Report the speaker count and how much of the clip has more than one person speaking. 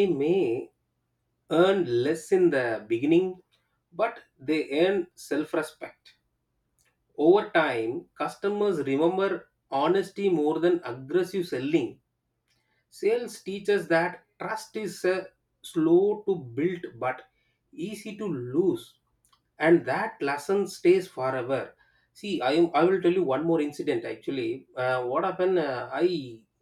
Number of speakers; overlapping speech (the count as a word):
one, no overlap